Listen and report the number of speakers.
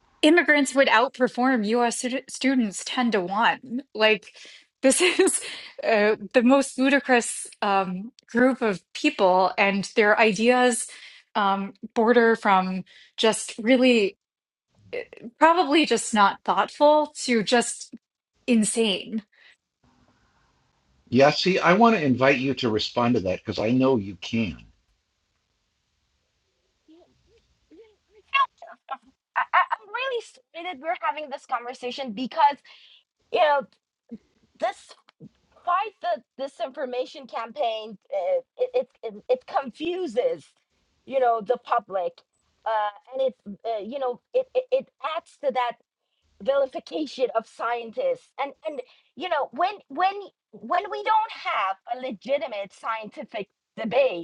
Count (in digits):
3